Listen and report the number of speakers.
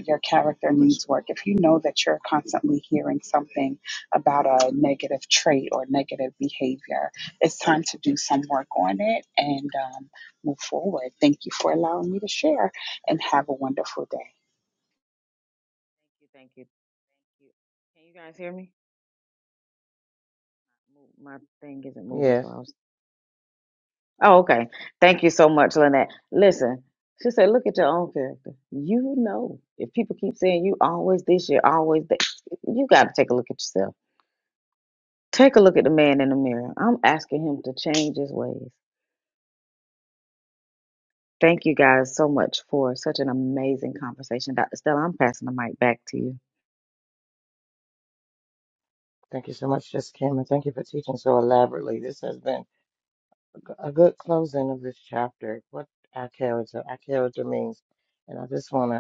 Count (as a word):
three